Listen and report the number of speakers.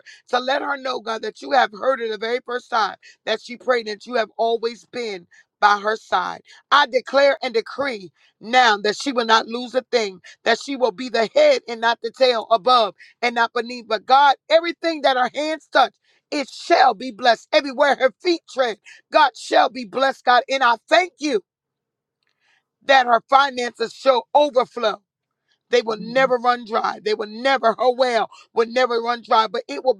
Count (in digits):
1